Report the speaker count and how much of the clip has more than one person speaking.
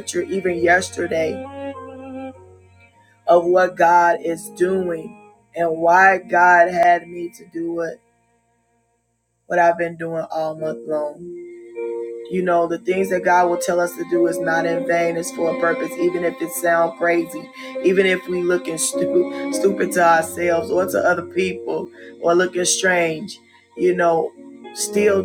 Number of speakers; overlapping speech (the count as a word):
one, no overlap